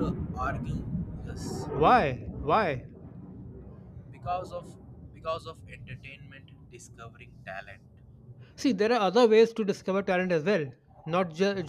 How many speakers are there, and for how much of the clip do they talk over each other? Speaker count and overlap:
two, no overlap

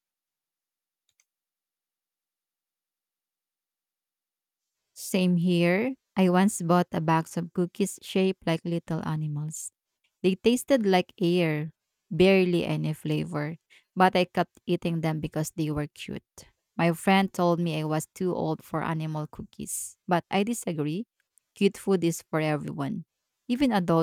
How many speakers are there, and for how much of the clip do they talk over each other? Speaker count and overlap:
one, no overlap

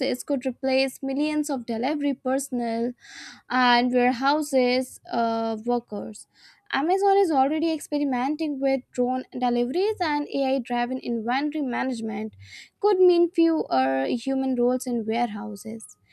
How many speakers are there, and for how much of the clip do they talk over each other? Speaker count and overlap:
one, no overlap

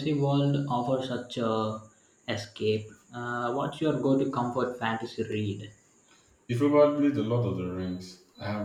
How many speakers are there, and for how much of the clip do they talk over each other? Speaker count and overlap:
two, no overlap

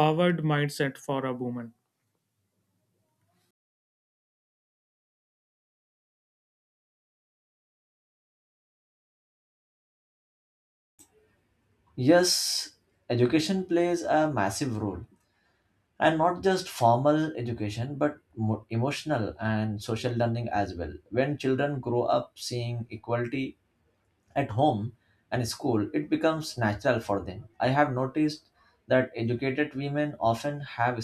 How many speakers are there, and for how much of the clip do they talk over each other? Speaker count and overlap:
two, no overlap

